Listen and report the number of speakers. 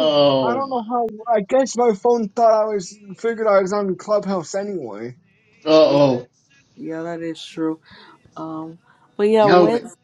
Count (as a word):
three